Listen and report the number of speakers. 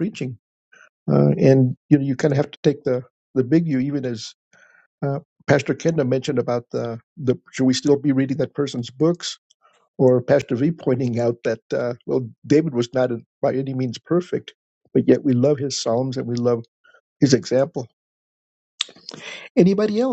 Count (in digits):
1